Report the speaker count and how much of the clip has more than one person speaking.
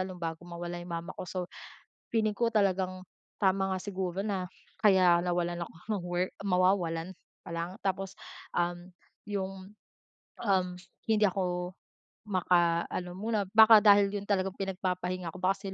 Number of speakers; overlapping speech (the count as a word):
one, no overlap